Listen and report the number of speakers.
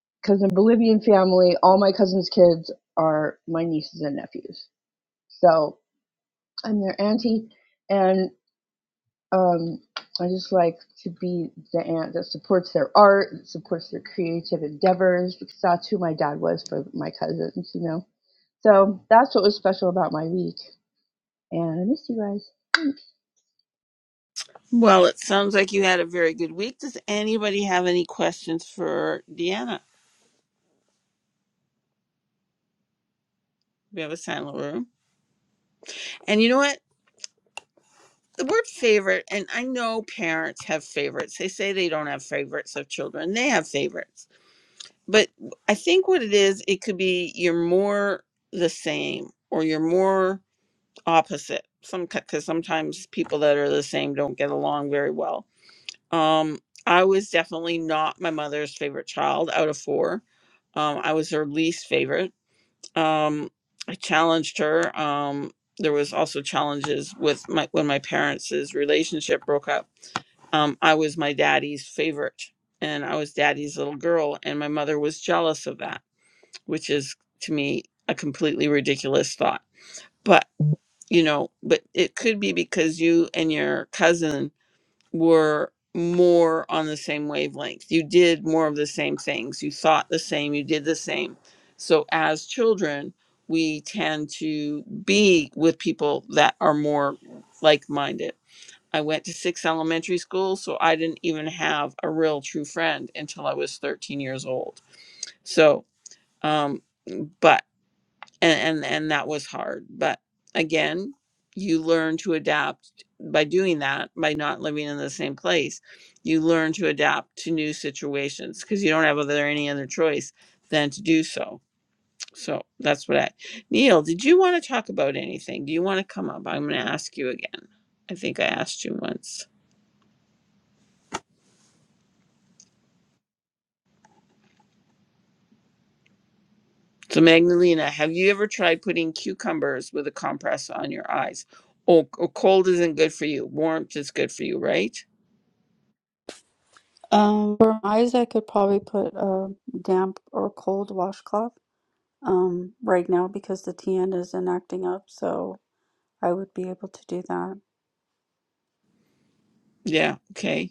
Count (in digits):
3